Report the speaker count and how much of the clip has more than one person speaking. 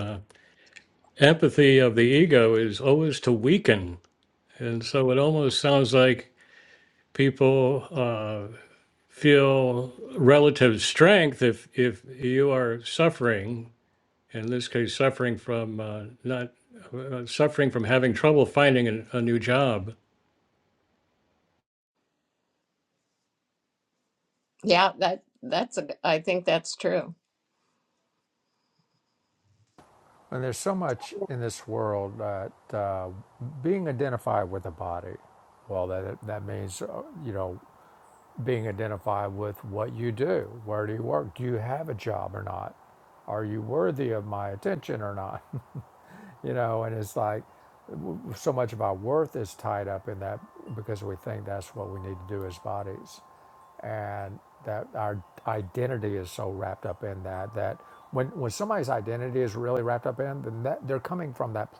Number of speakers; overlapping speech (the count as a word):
three, no overlap